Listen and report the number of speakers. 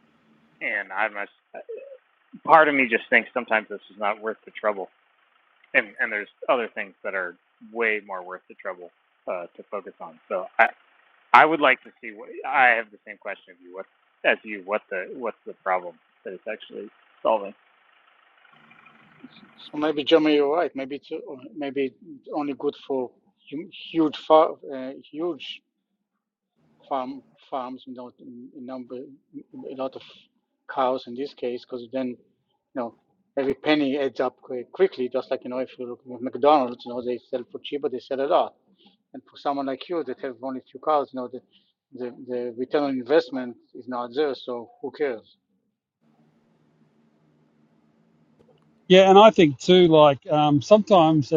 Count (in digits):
3